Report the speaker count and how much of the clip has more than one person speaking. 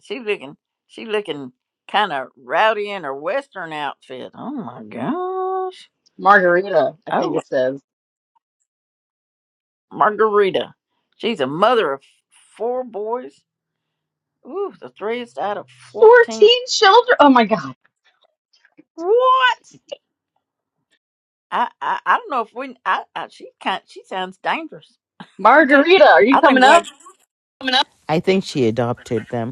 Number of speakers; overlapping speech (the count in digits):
3, about 5%